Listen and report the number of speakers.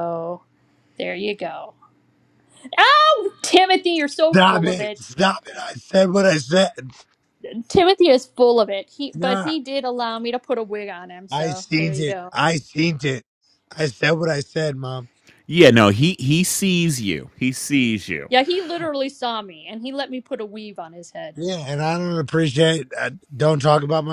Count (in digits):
3